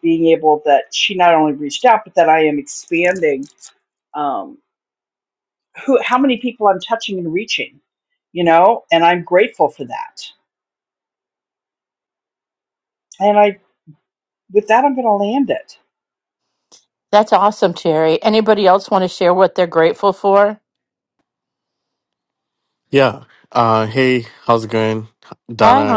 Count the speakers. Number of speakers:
3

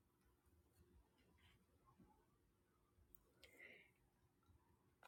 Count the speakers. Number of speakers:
0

